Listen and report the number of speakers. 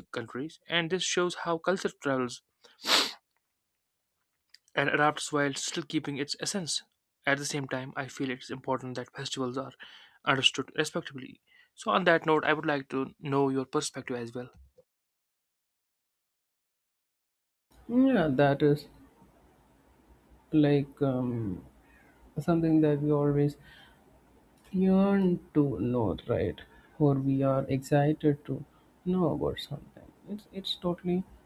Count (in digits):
2